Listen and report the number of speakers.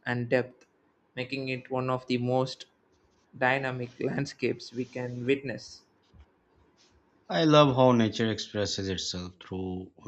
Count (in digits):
2